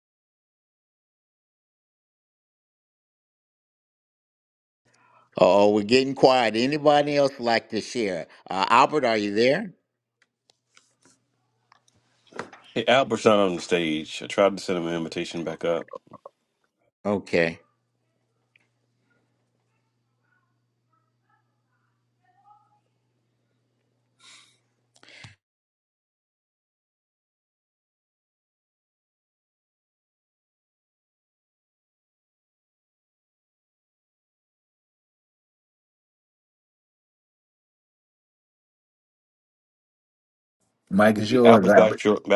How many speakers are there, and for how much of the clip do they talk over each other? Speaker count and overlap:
three, about 1%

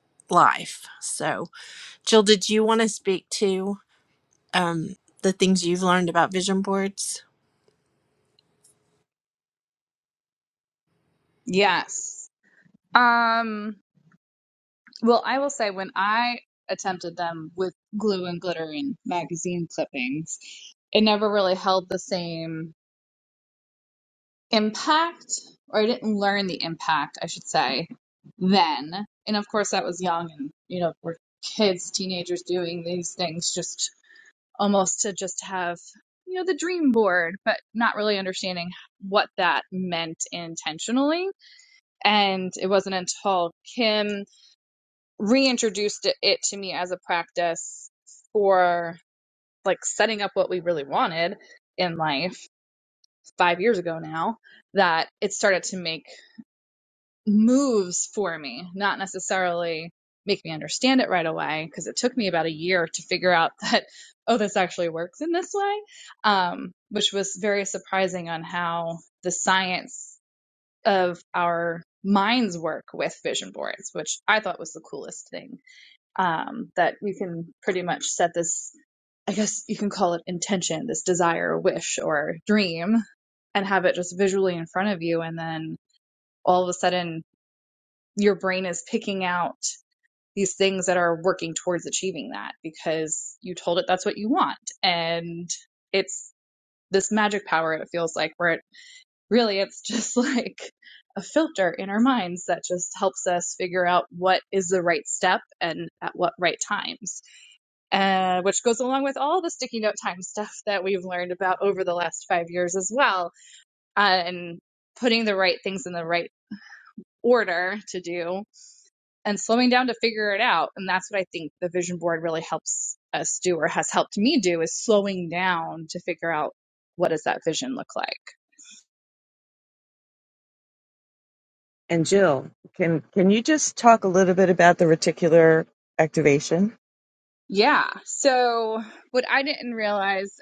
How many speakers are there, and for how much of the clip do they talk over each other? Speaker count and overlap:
three, no overlap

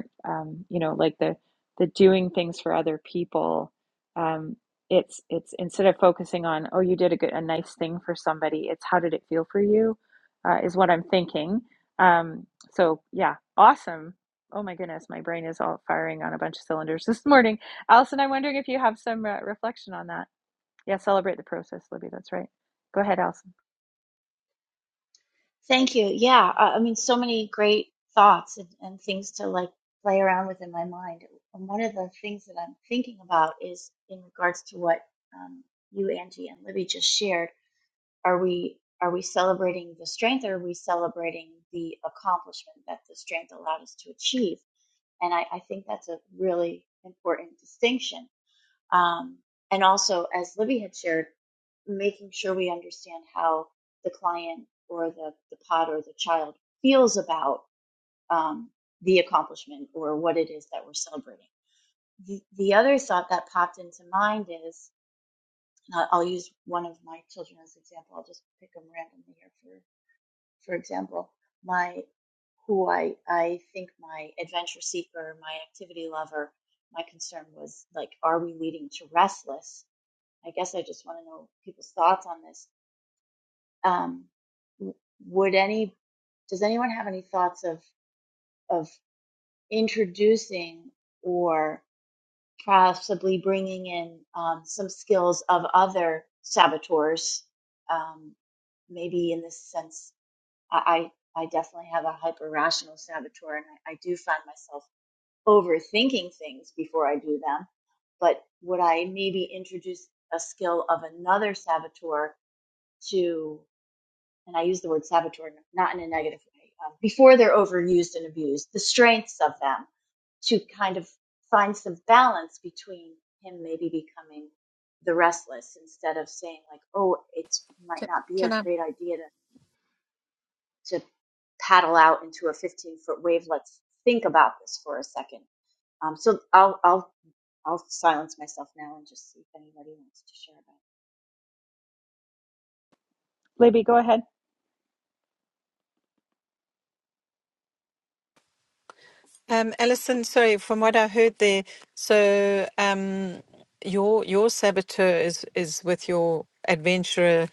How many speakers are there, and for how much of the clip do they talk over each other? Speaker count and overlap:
three, under 1%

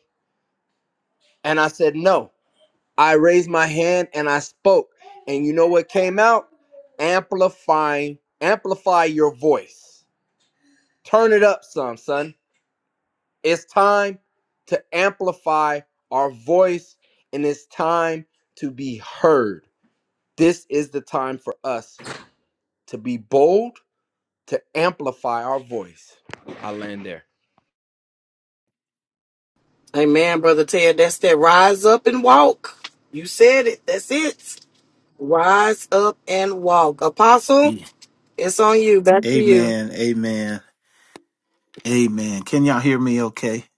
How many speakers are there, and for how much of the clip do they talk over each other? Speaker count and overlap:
three, about 1%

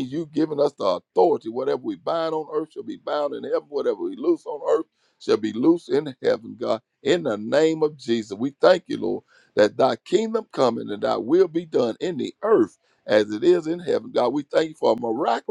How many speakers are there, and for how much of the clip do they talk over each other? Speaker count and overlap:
one, no overlap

